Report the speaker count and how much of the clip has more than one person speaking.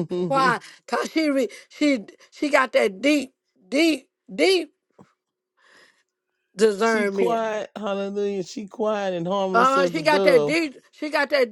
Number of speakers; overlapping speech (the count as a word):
two, about 13%